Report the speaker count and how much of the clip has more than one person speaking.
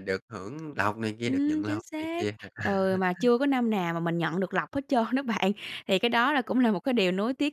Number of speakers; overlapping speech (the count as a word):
two, about 14%